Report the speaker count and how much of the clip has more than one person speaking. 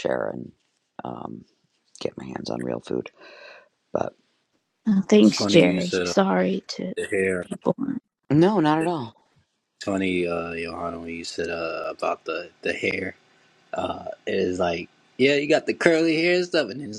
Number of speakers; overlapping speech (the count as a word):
three, about 5%